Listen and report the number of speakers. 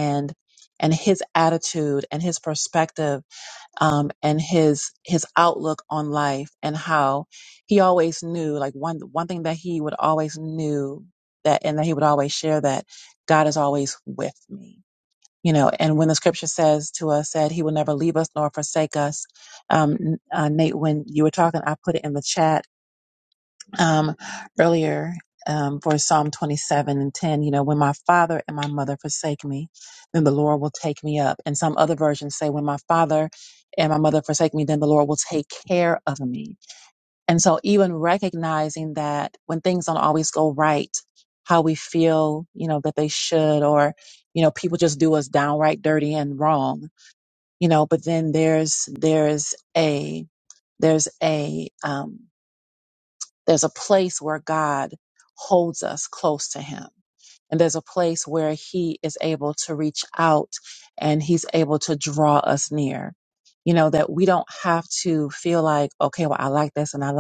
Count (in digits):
1